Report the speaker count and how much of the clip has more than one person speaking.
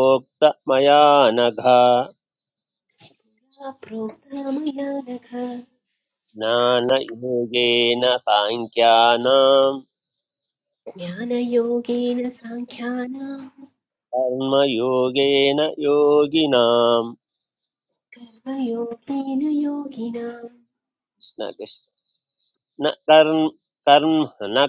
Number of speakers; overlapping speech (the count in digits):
2, no overlap